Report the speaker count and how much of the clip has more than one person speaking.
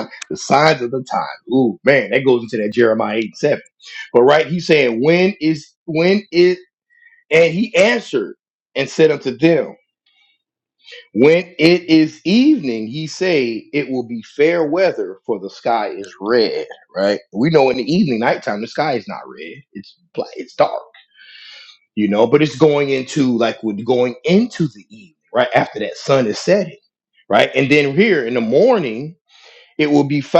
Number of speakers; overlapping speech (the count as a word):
one, no overlap